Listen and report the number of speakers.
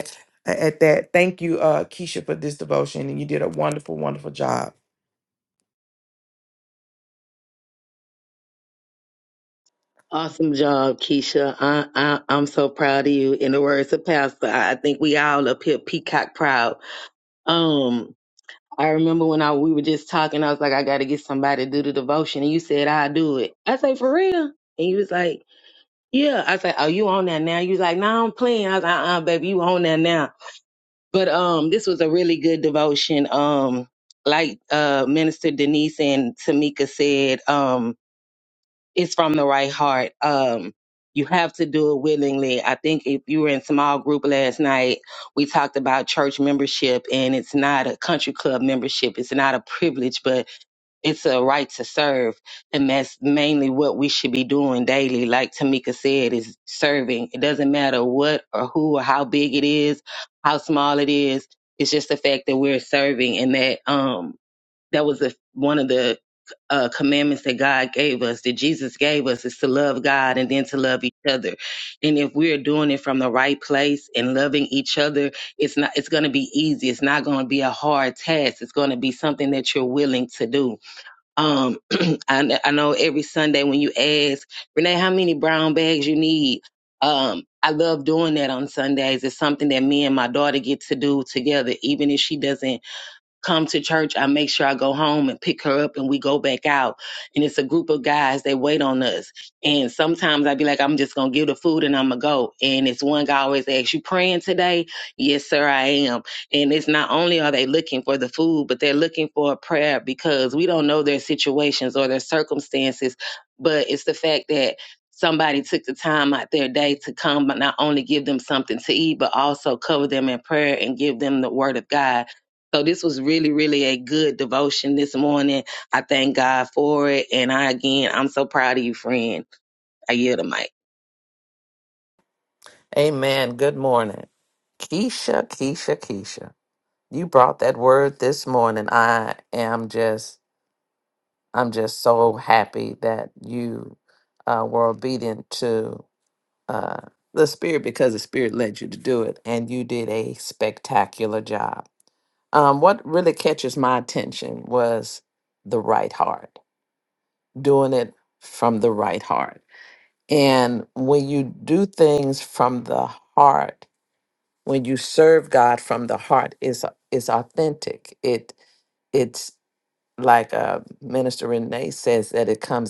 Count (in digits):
3